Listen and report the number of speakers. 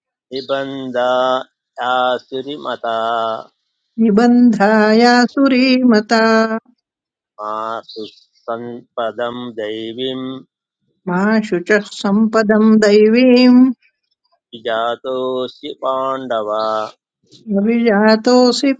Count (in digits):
2